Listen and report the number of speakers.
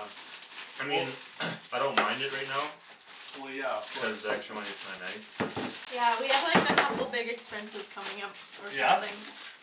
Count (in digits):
3